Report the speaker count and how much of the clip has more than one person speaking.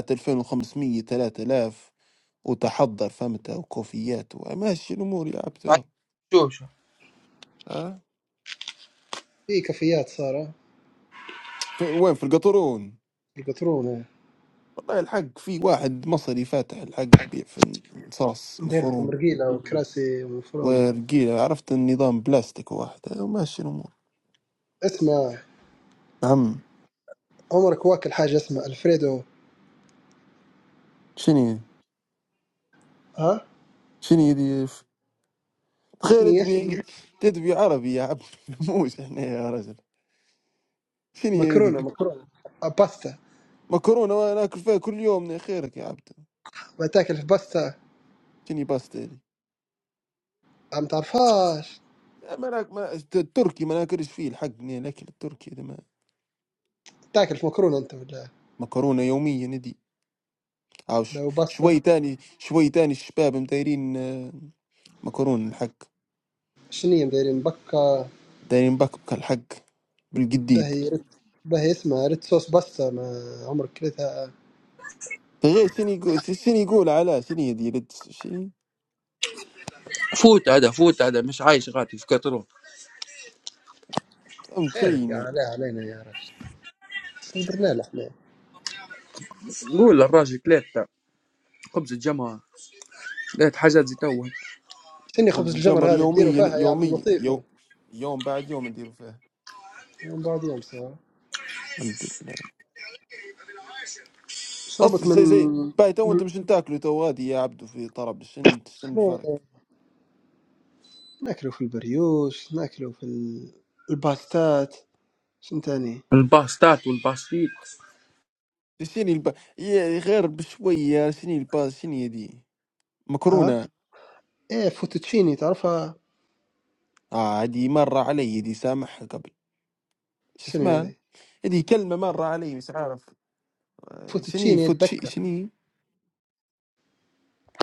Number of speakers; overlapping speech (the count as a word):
three, about 5%